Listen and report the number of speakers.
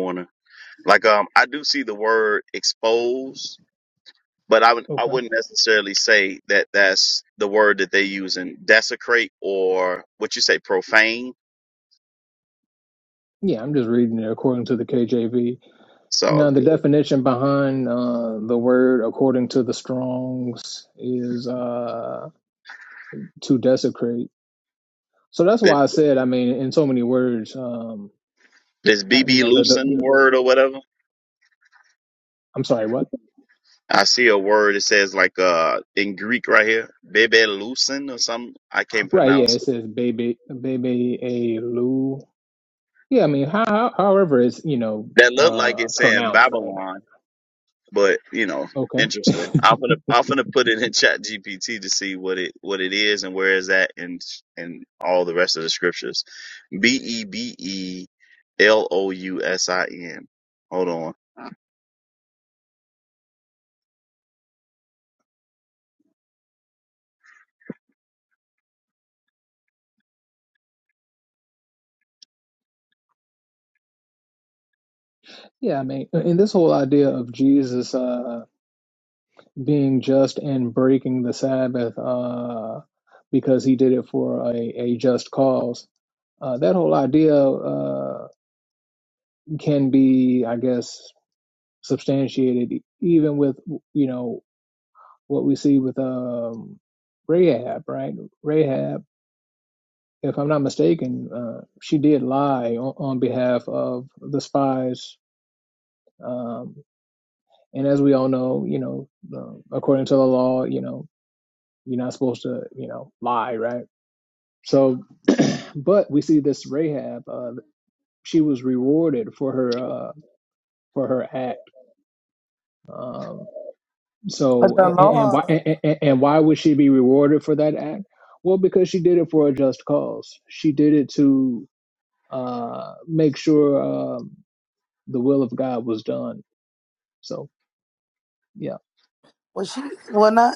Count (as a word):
three